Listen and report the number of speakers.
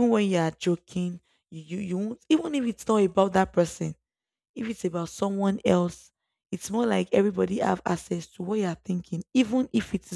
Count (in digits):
1